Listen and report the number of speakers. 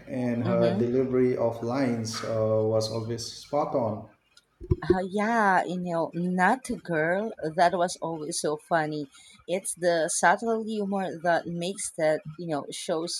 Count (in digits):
2